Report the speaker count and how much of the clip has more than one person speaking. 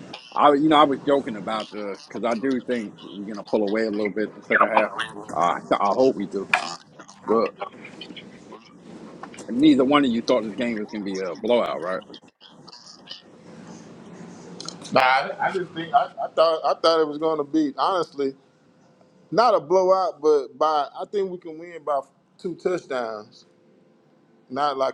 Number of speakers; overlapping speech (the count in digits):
2, no overlap